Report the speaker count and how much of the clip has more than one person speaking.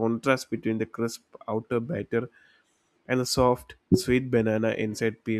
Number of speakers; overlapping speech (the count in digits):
1, no overlap